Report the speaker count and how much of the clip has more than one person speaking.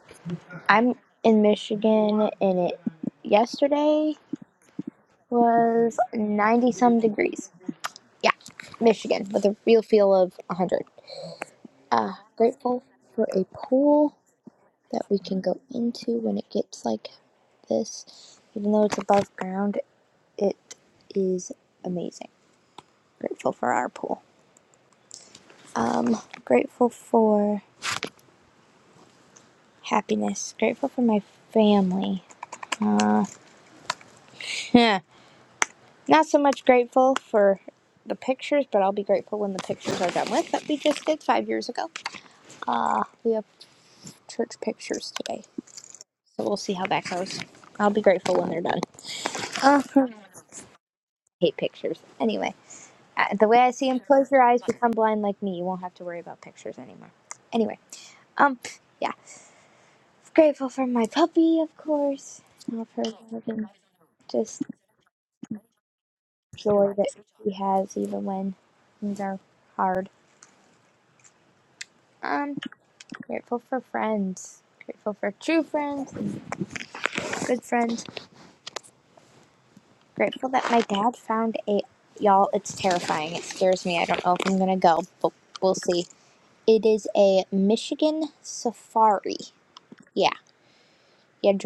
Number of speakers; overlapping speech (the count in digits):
1, no overlap